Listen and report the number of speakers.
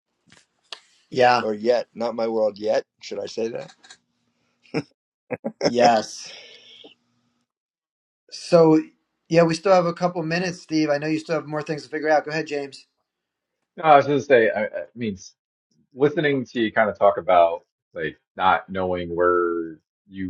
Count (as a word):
three